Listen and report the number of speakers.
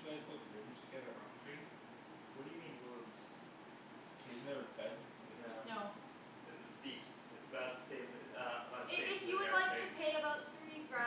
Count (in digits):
3